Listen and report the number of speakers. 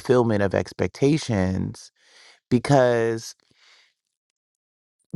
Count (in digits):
1